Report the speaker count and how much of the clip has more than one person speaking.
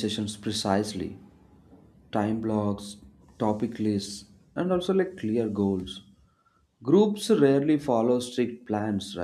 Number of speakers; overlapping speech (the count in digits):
1, no overlap